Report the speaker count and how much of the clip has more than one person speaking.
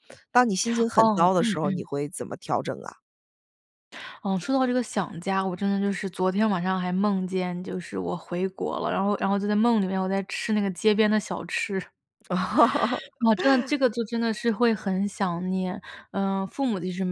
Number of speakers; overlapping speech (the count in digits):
2, about 5%